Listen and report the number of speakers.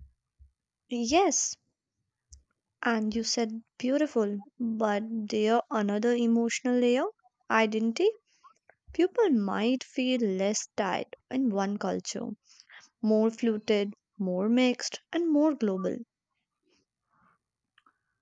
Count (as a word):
one